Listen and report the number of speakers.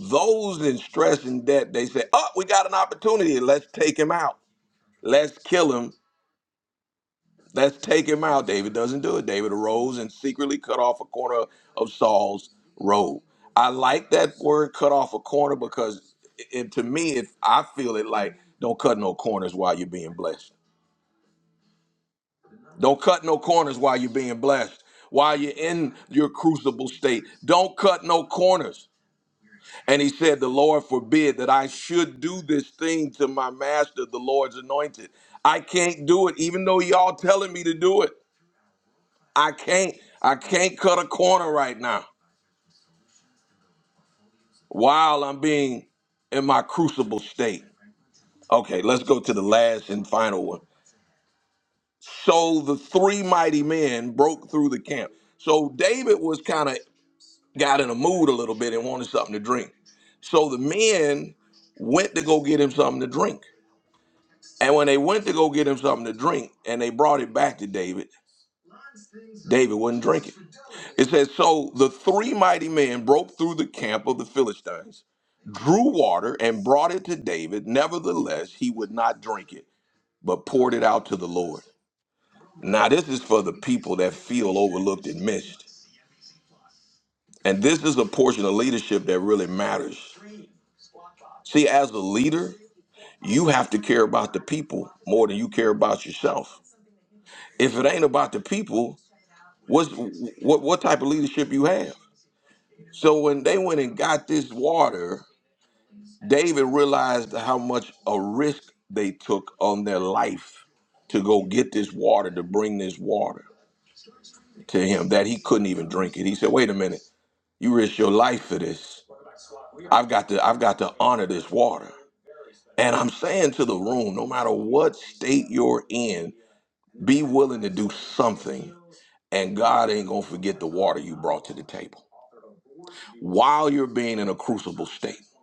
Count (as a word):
one